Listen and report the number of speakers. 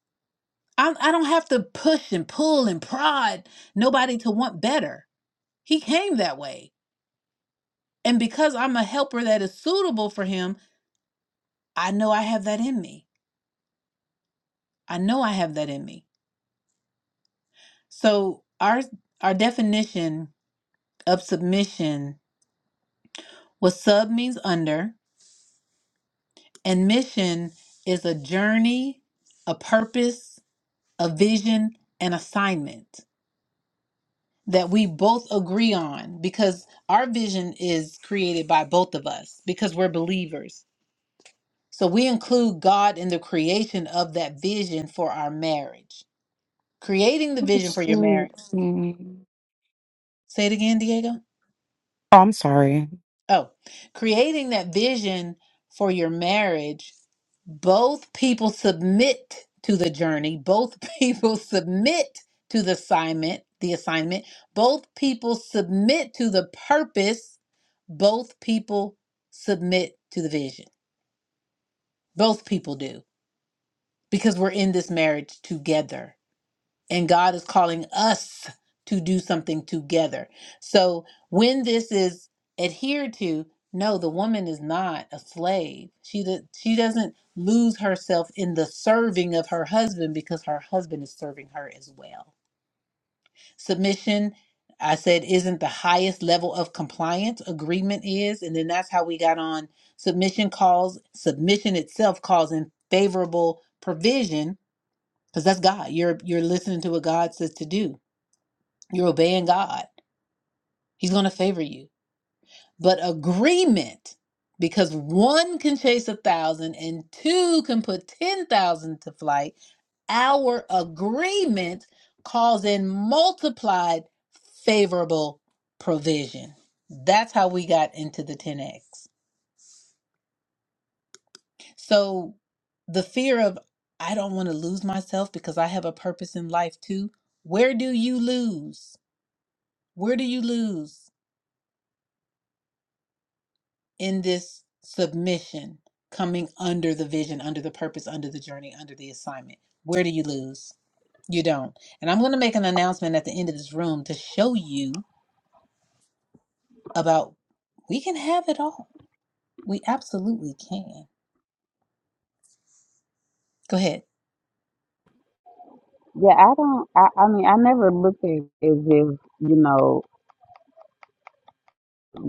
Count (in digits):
3